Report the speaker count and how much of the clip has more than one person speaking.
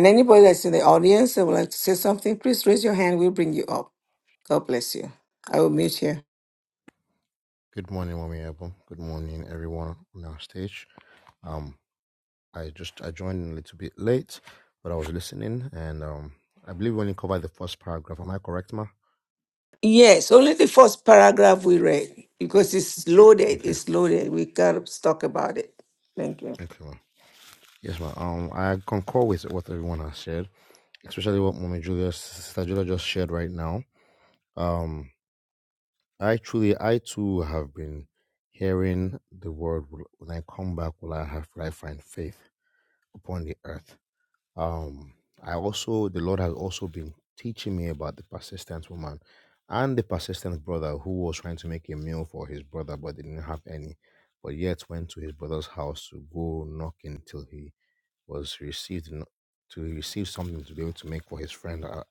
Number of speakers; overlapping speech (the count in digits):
2, about 1%